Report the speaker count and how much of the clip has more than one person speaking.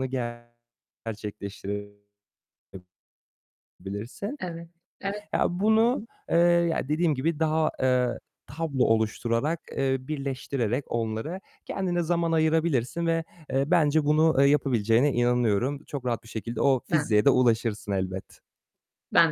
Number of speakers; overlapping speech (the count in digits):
2, about 3%